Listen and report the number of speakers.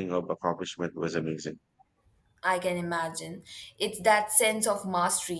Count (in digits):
2